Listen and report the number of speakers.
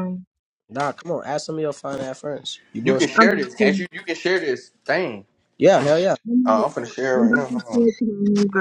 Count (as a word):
three